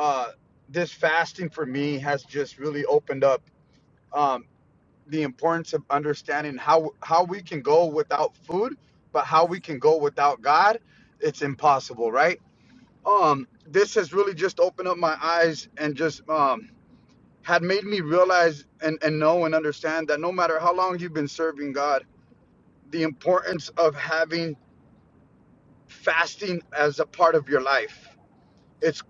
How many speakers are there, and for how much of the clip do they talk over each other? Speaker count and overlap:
1, no overlap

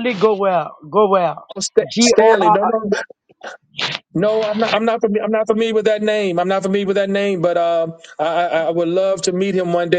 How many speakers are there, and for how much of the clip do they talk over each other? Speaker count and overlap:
2, about 10%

